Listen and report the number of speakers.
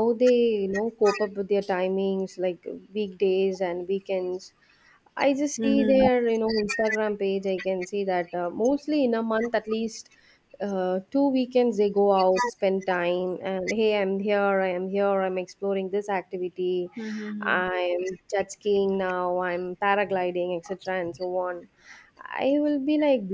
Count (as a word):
two